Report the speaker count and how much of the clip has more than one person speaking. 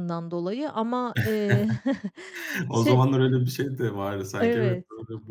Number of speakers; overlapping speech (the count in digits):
2, about 11%